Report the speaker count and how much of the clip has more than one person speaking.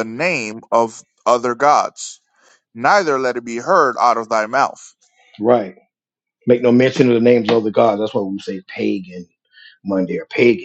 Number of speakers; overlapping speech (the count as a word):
two, no overlap